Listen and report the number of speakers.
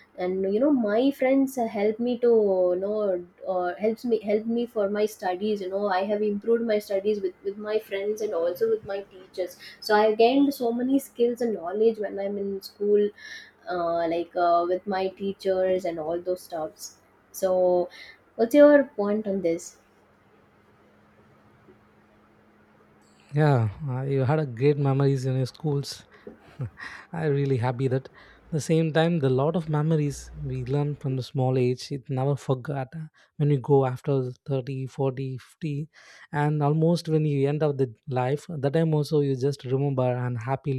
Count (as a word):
two